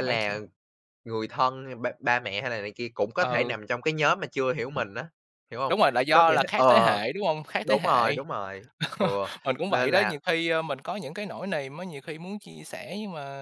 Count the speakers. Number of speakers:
two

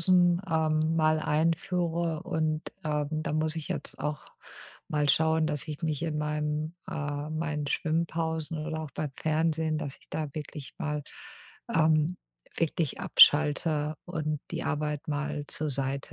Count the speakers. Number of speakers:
one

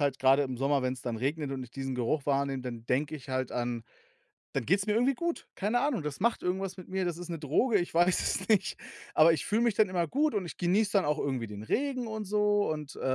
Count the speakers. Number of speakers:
one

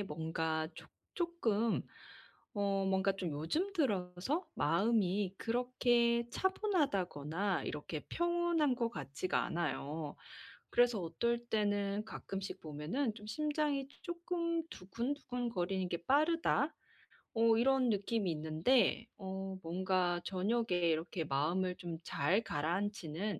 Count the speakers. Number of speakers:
one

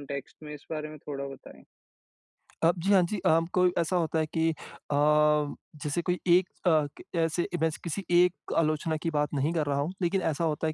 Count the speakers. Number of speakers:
two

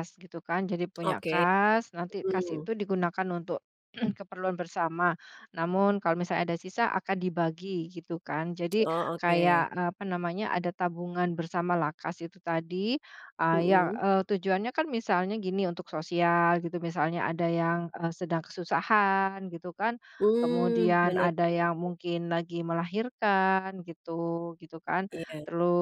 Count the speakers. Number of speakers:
two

